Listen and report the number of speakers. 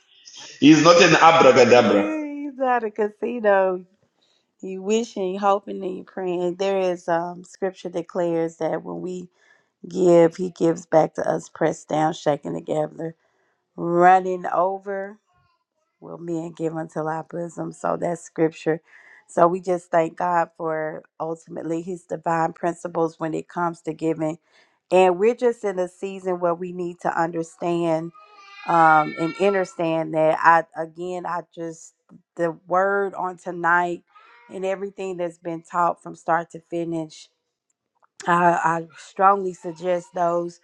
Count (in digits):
2